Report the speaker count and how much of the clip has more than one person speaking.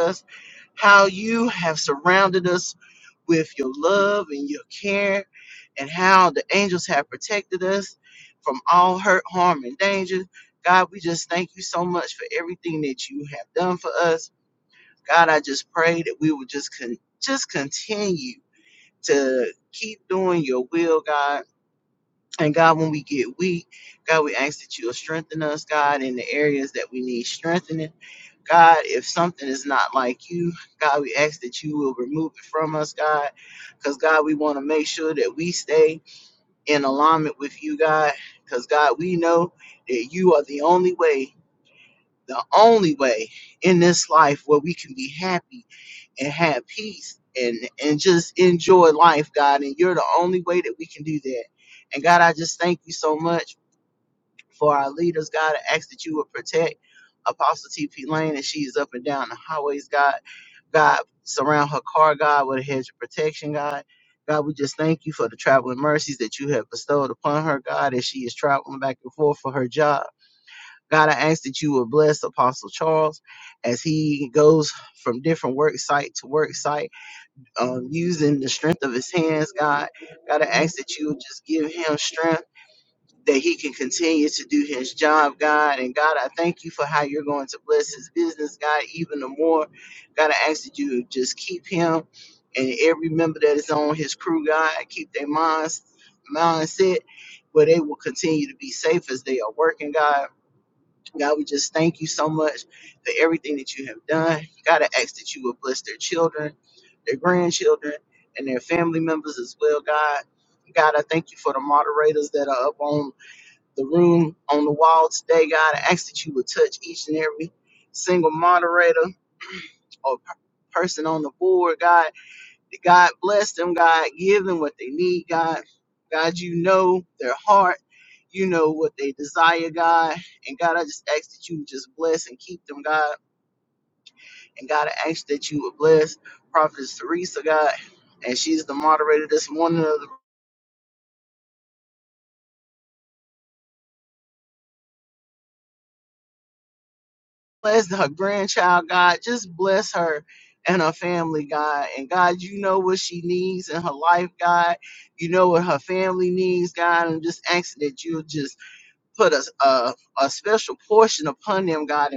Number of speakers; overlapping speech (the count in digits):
1, no overlap